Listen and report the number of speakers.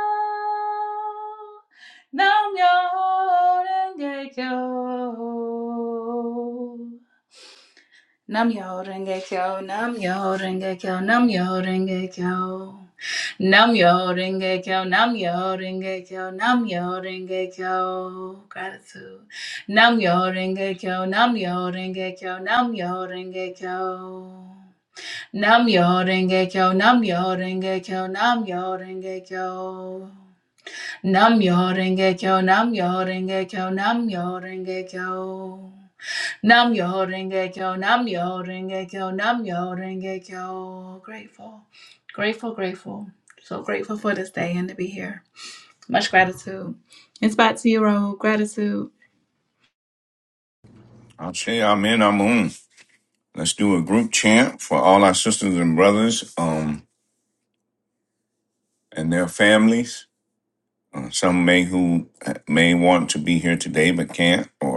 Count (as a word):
two